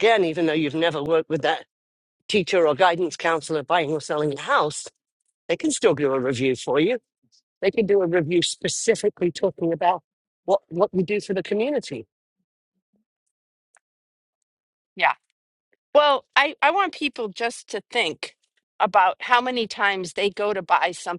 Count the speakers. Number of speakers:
two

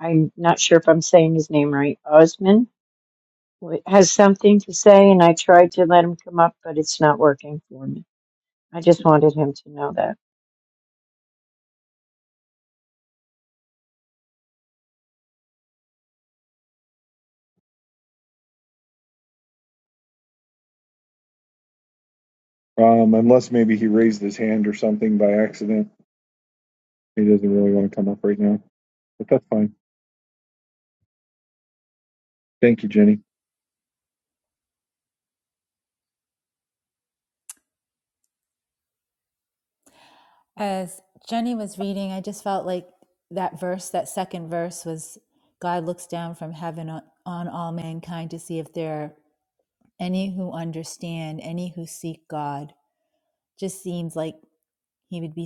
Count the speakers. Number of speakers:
three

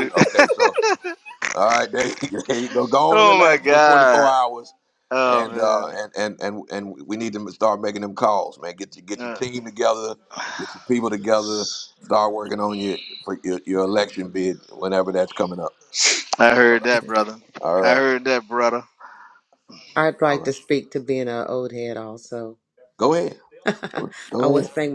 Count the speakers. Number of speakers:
three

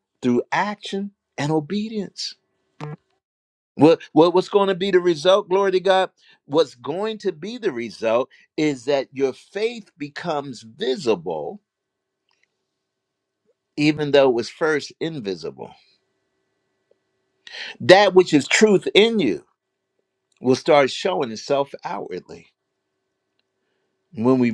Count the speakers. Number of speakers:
one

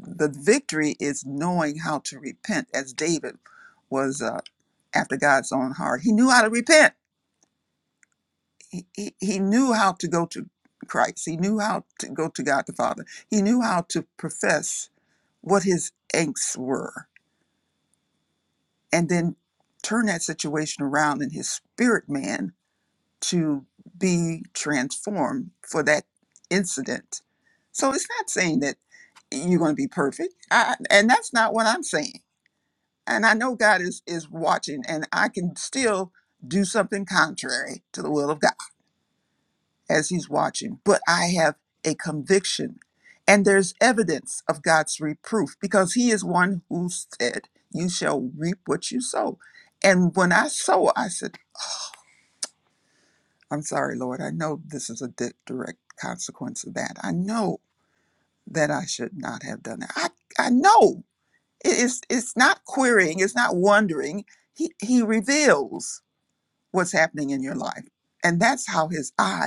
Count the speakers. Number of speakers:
one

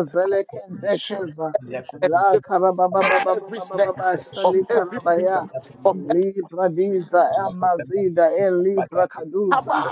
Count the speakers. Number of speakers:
three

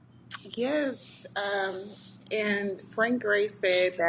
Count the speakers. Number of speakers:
one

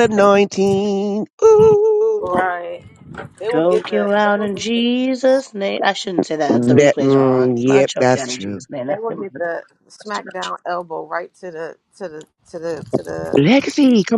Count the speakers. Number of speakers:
three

